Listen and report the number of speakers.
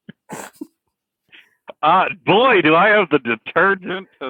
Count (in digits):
1